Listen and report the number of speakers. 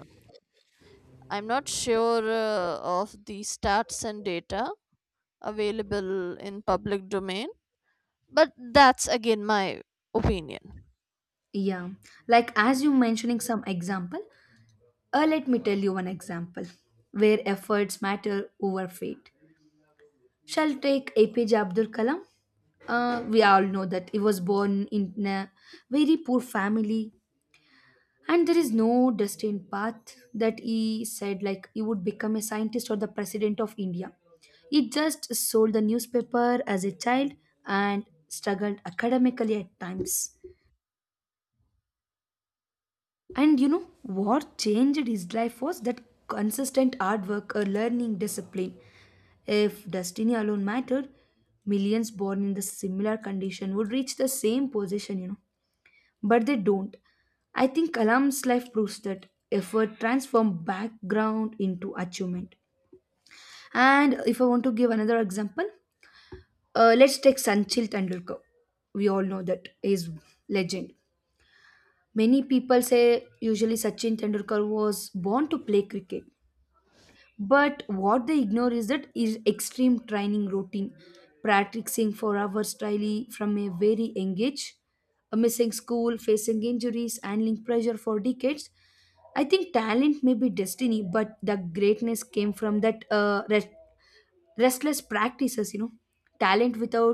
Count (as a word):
two